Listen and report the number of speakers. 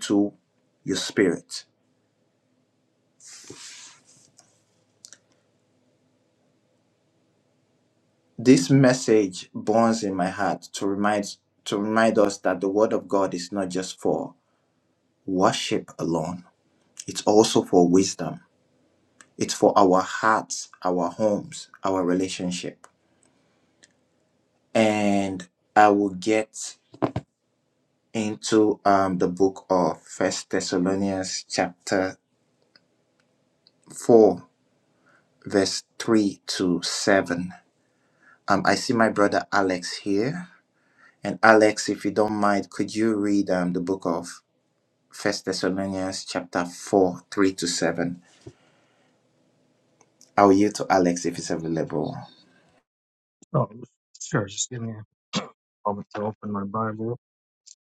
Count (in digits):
2